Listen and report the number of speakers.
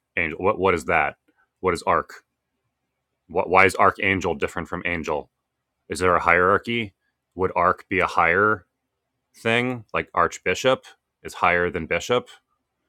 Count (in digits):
1